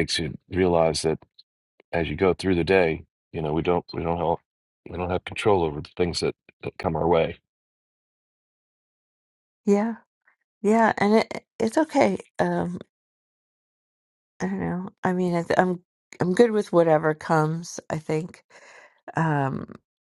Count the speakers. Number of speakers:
2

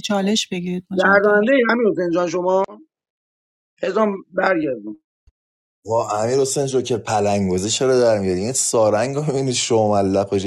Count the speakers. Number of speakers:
3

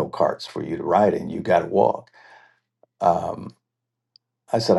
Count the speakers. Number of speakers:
1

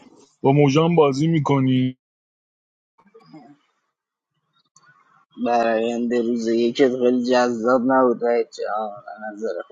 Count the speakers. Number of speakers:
2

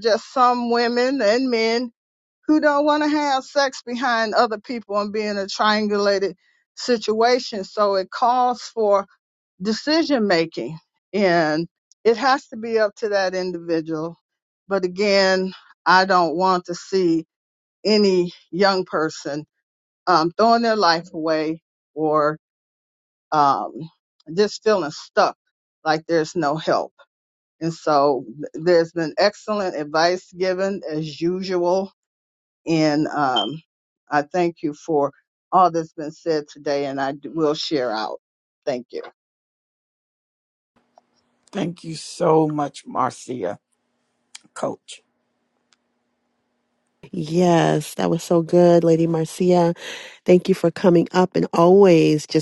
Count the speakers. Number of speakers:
3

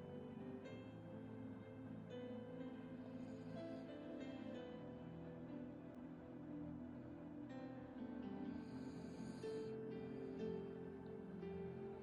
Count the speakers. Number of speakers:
0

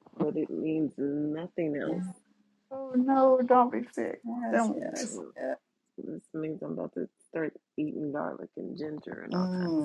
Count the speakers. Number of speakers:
3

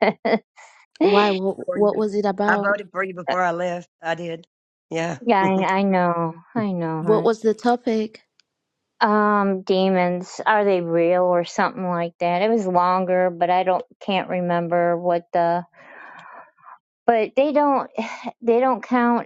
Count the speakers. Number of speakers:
3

